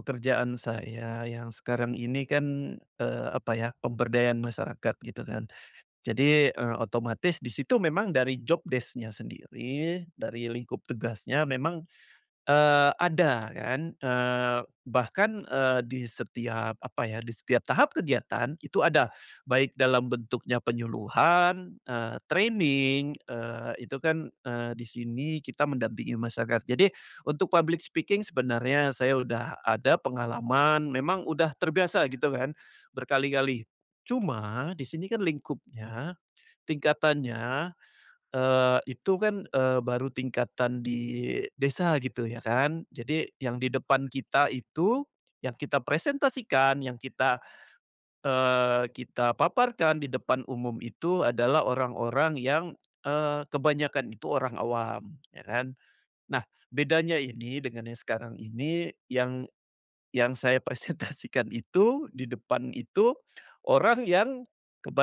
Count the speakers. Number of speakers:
1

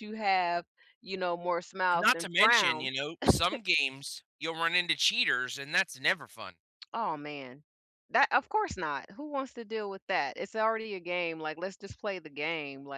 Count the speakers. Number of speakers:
2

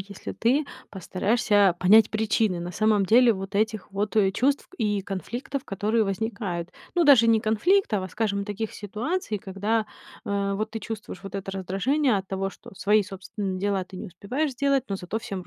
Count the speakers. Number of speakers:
1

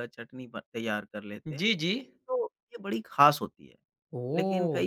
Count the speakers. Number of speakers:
2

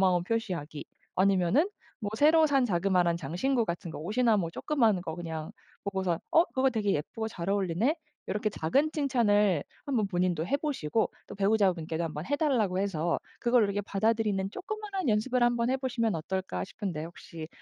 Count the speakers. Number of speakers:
1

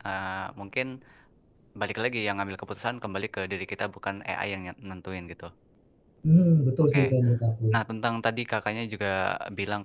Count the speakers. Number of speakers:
2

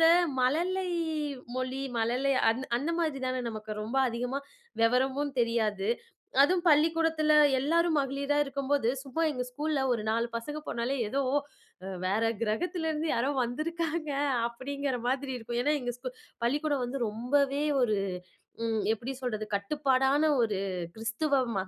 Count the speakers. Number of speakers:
1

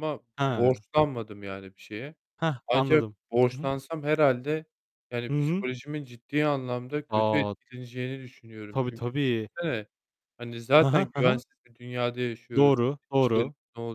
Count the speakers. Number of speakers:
2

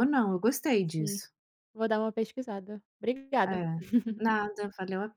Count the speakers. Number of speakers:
2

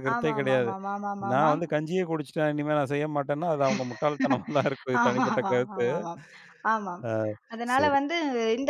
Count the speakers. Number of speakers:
2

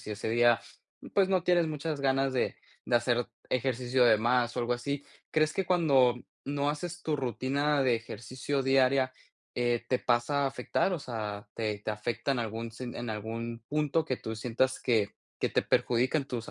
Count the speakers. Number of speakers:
1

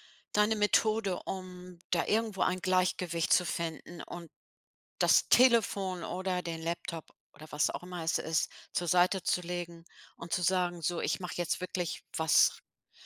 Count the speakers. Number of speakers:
1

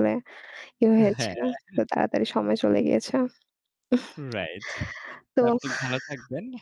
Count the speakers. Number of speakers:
2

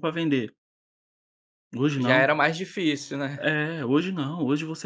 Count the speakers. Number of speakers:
2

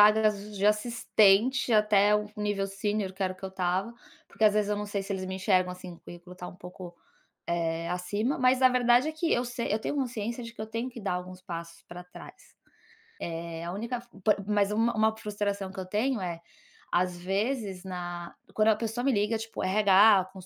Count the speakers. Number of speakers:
1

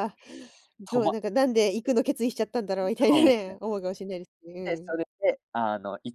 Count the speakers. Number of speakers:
2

